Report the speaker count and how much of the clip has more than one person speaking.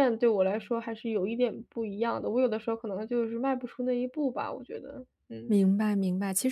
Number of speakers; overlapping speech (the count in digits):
2, about 1%